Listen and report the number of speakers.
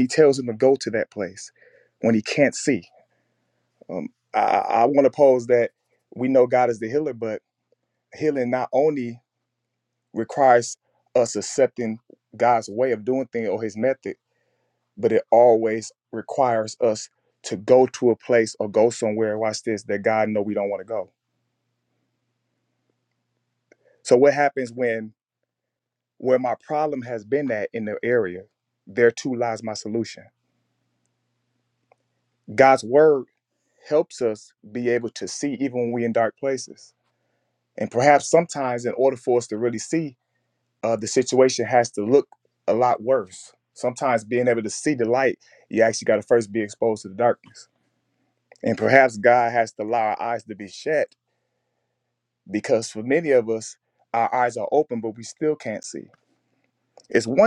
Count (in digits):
1